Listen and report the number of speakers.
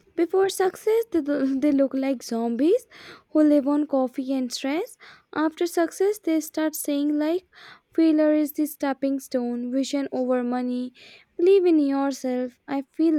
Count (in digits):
1